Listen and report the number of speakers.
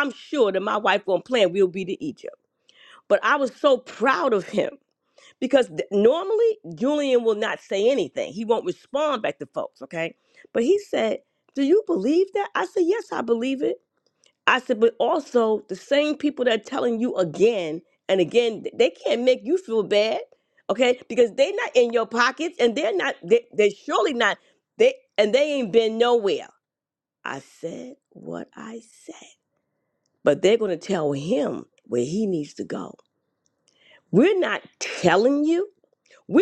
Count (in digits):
1